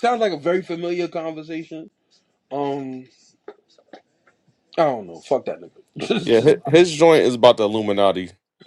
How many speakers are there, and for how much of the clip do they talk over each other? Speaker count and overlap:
2, about 3%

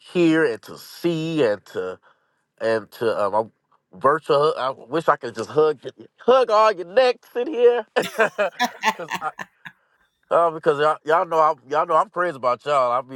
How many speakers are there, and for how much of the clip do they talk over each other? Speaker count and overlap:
1, no overlap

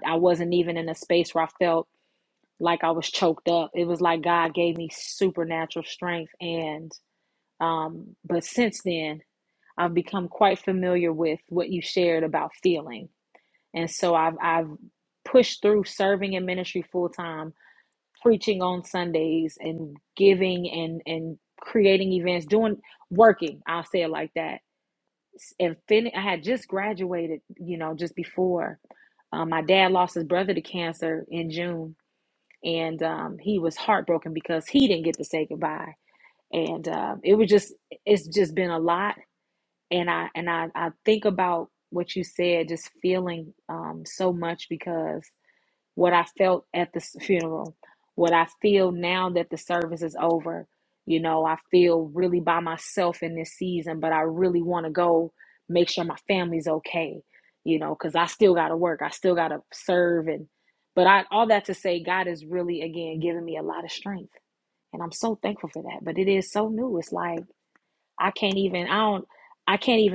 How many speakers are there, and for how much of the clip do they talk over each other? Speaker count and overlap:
1, no overlap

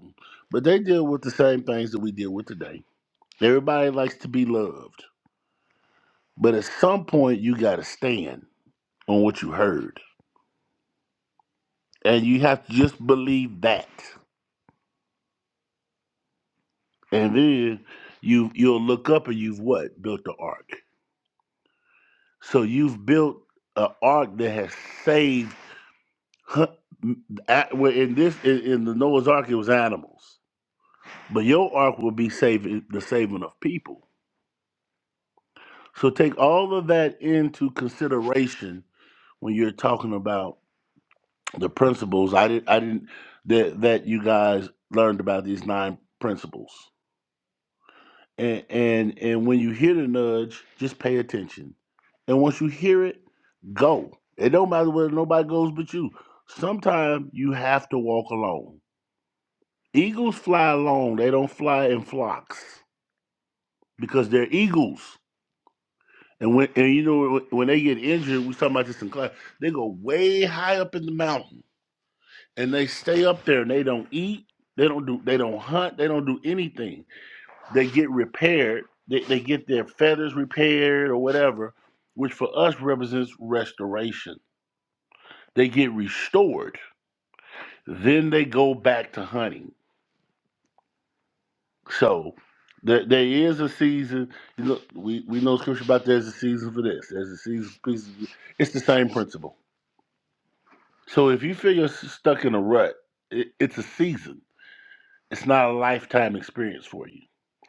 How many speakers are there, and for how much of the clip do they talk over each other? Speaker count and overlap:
1, no overlap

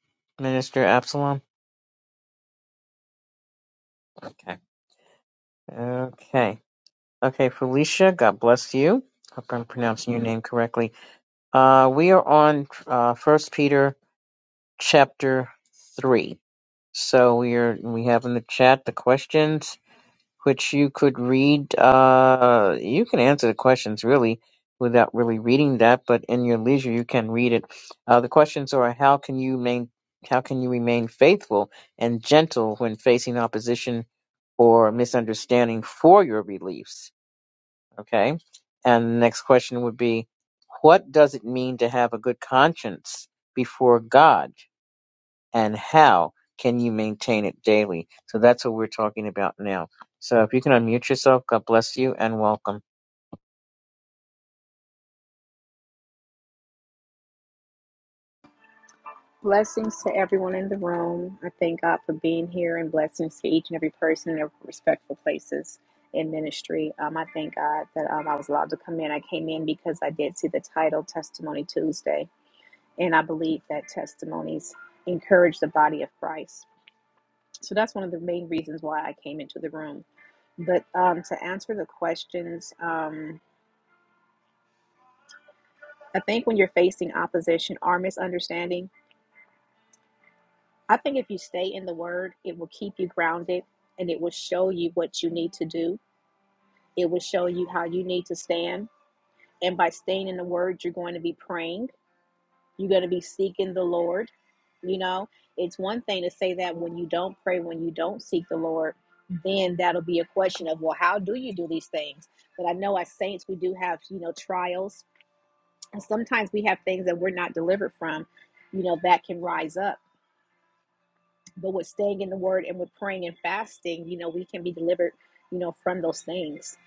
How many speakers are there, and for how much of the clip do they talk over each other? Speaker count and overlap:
2, no overlap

